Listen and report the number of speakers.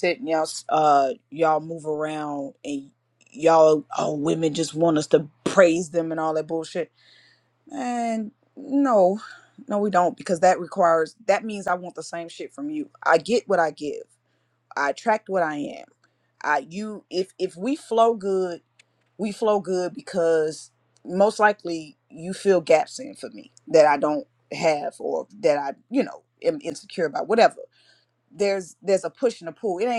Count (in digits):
1